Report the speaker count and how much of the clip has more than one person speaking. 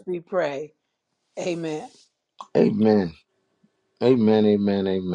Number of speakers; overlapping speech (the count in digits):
2, no overlap